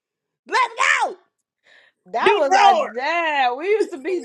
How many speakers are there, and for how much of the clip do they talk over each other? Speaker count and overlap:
two, about 17%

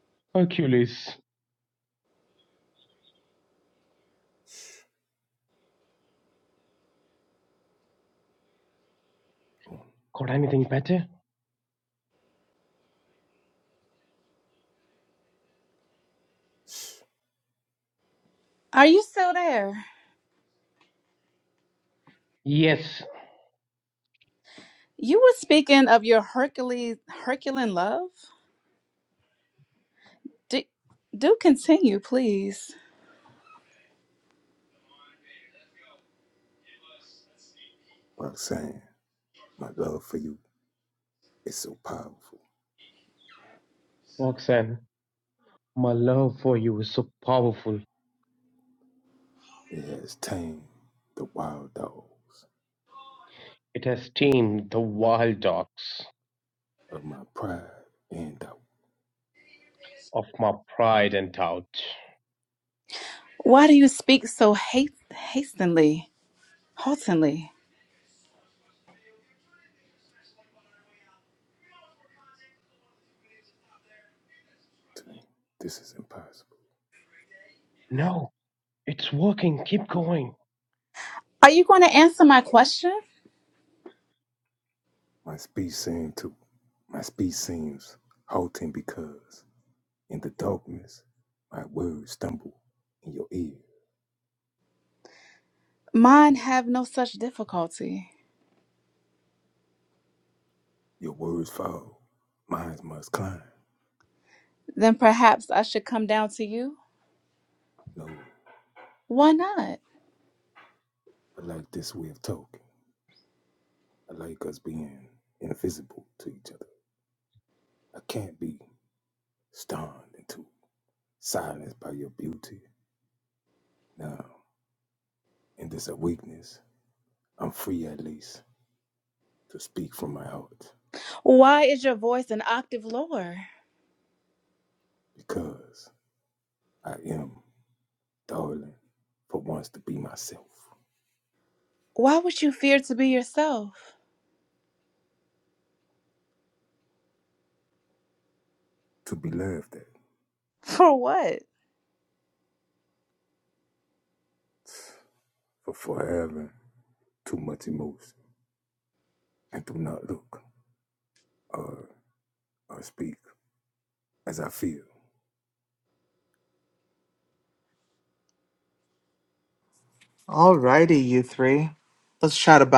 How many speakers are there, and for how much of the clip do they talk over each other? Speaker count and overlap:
four, no overlap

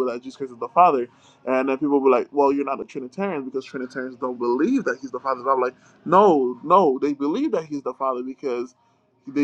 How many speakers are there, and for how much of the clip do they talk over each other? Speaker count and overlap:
one, no overlap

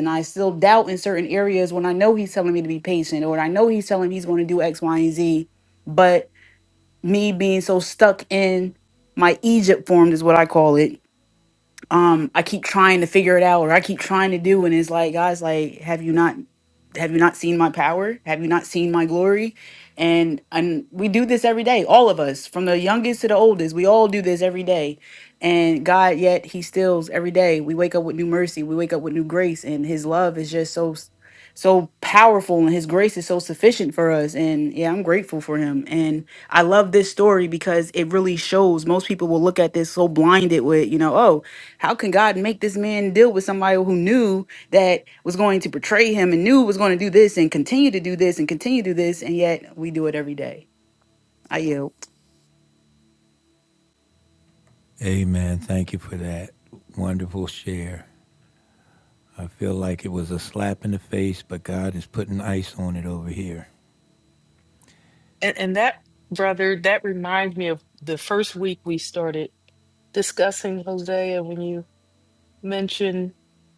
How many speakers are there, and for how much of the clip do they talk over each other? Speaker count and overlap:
three, no overlap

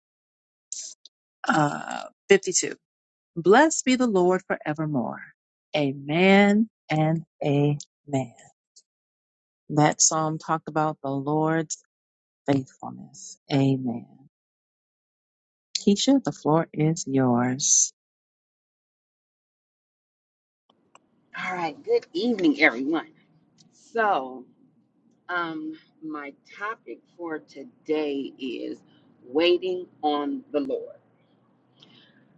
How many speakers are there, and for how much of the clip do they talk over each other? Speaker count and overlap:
two, no overlap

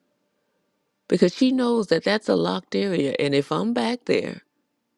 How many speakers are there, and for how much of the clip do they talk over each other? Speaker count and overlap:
one, no overlap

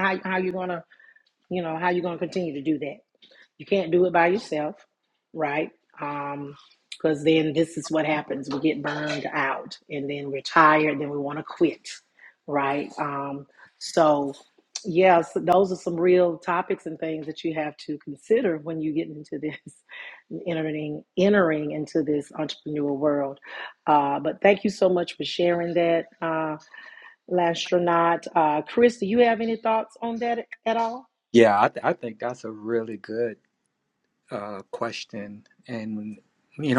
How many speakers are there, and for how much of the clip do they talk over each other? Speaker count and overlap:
two, no overlap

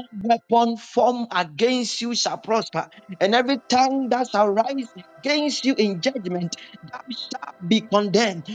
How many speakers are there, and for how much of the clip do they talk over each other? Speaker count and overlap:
one, no overlap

